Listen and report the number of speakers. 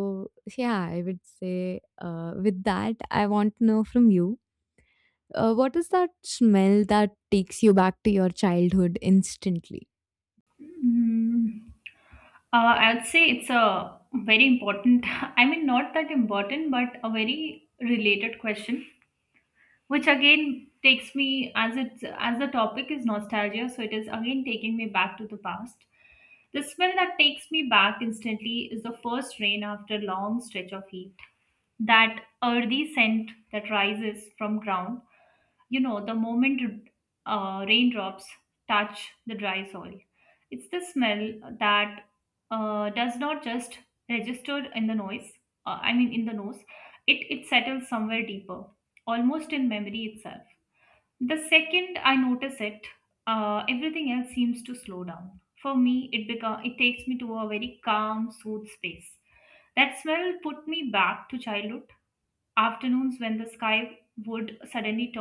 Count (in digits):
2